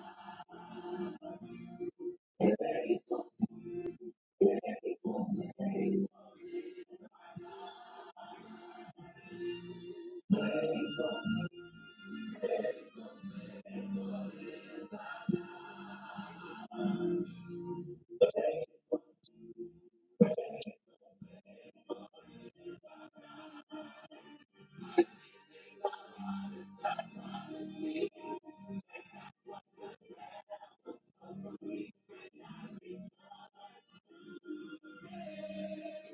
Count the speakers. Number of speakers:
0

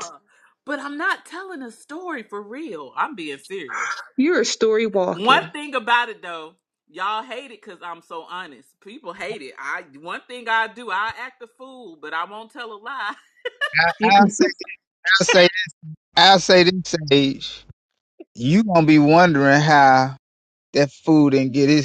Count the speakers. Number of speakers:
3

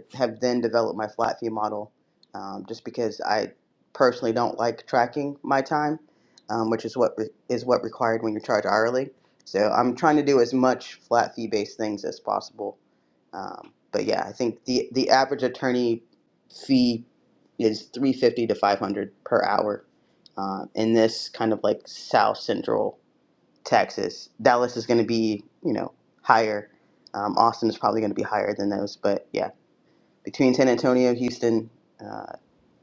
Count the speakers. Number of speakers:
1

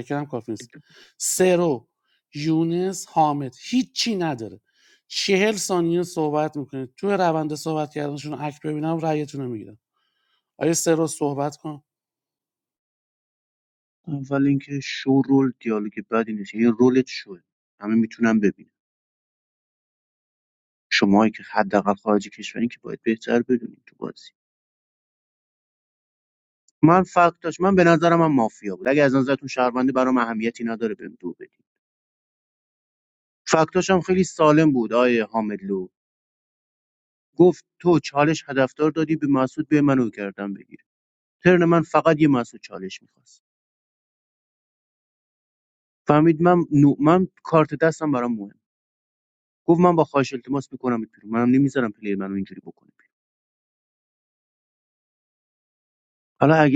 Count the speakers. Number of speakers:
2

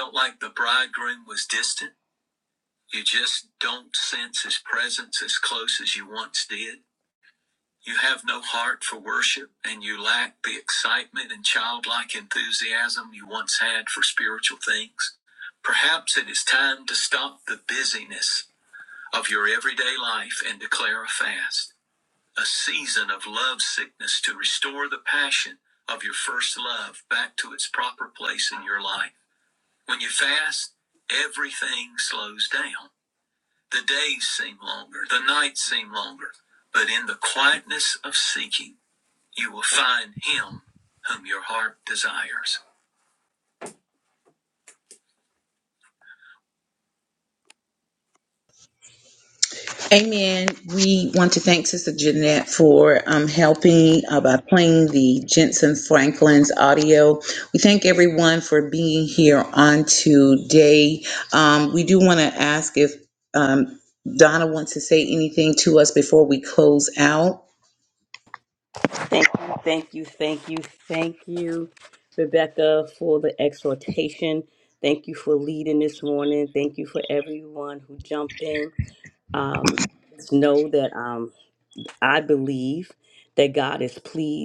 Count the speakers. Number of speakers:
3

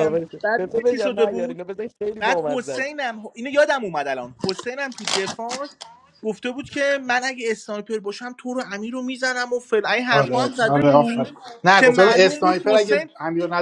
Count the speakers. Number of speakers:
3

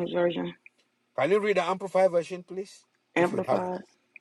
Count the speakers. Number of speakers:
2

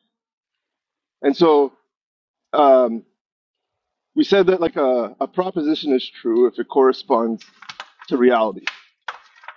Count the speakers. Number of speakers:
1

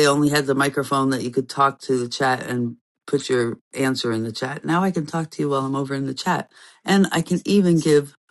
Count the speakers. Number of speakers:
1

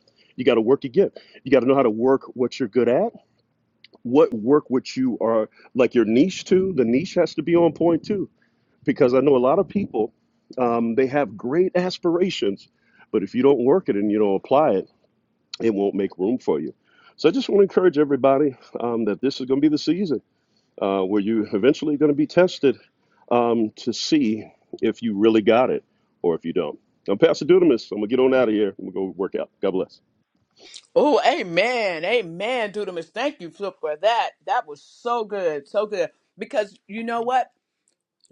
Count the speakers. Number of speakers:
2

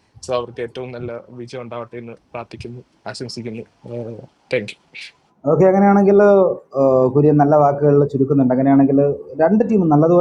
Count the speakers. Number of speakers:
2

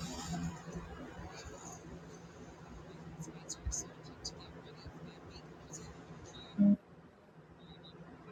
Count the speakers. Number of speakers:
0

